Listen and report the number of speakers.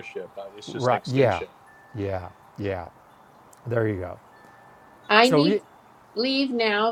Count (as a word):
three